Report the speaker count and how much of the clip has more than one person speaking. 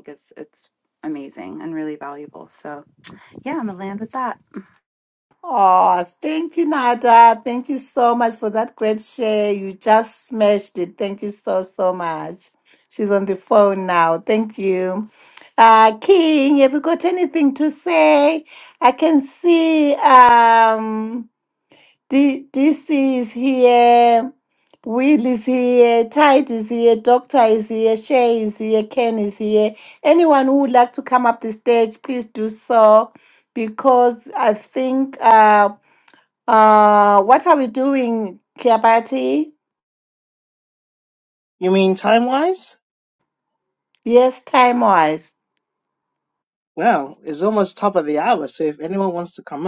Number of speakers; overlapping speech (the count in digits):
3, no overlap